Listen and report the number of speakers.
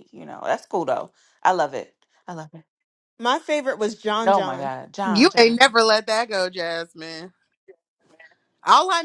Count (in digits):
3